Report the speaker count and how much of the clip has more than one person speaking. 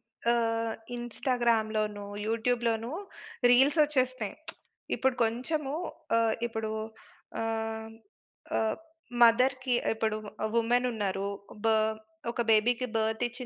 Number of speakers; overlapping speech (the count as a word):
one, no overlap